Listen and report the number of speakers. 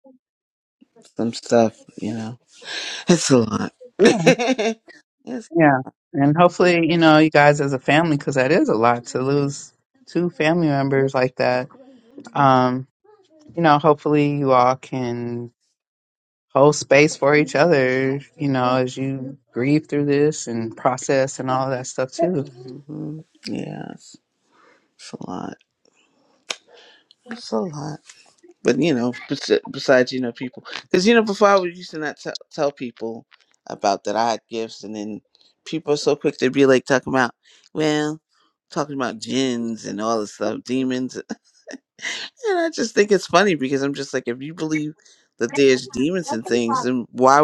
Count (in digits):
2